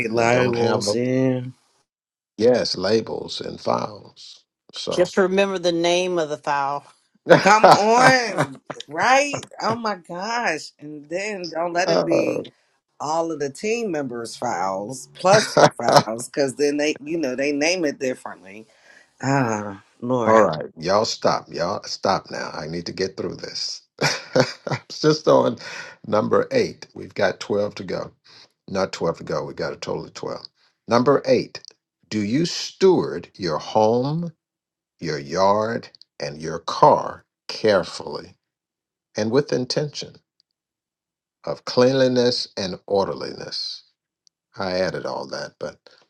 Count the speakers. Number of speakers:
3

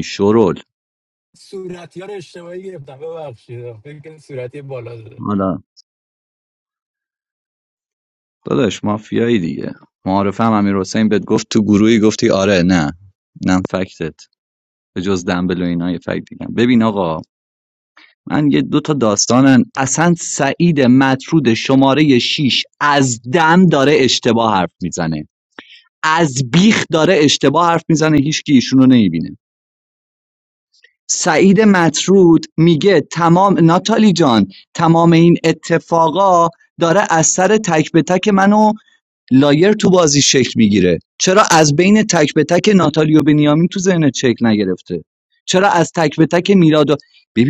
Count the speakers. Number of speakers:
2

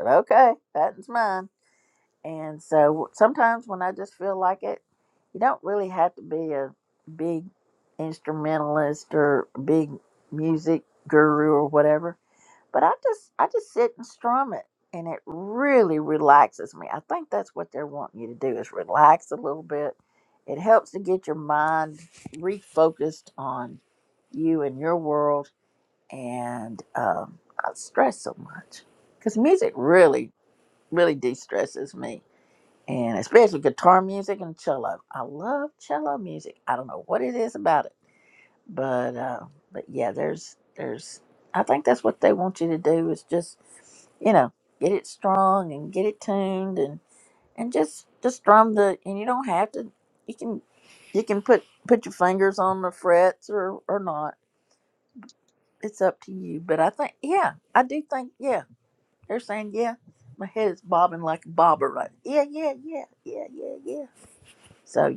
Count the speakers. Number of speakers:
1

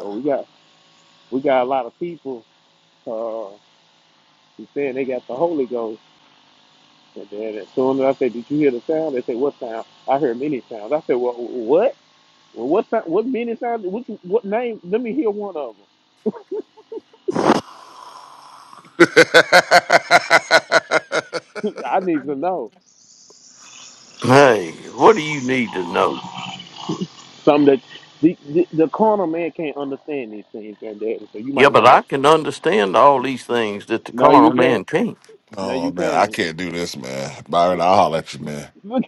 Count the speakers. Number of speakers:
3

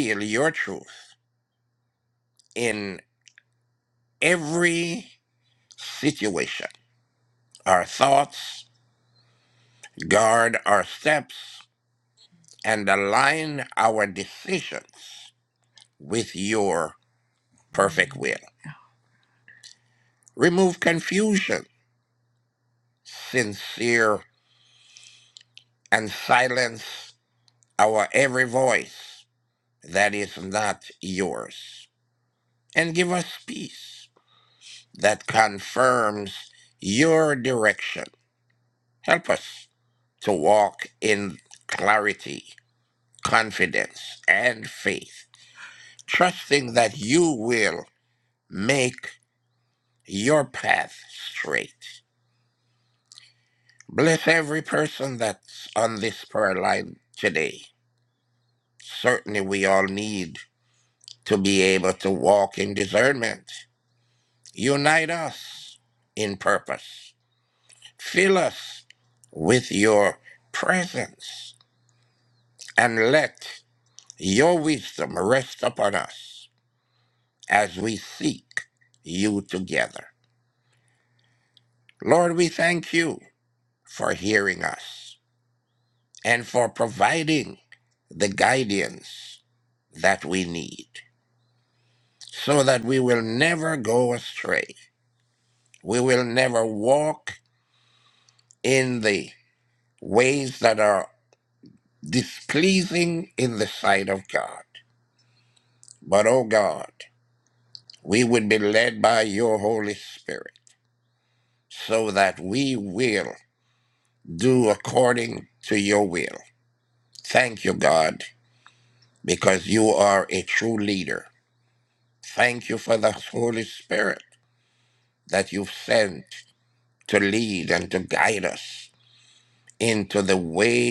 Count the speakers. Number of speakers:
1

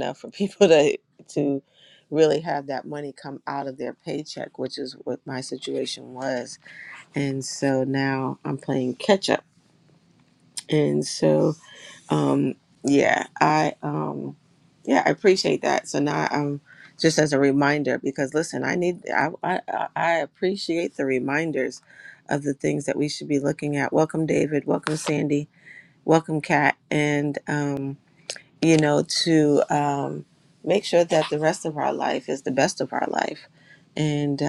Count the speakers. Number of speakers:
1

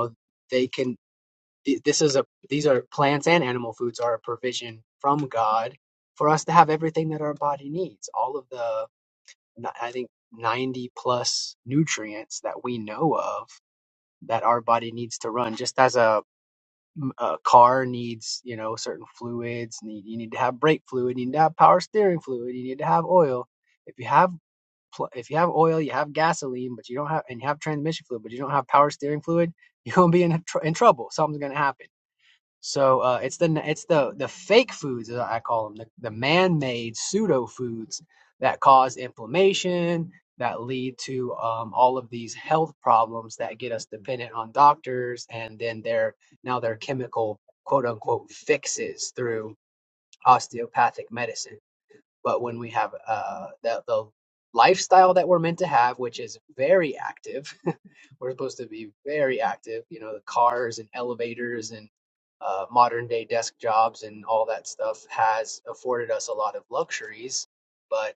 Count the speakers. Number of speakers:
1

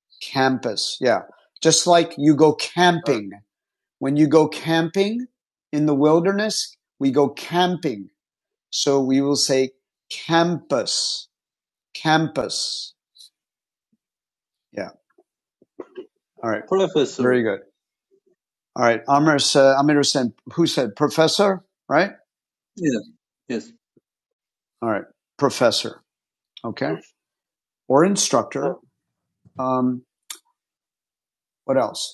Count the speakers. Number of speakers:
2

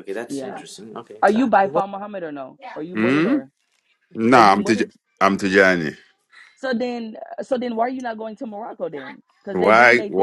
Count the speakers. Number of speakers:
3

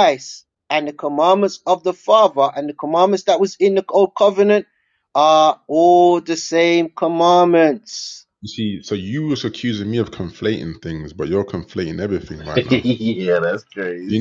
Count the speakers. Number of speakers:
3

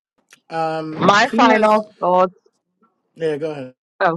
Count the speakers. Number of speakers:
2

